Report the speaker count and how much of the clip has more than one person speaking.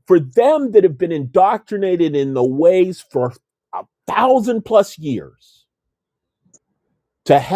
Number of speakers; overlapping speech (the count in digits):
1, no overlap